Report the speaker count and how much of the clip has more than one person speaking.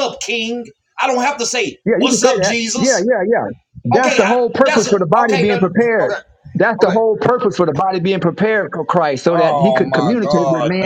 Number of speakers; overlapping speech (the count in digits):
2, about 45%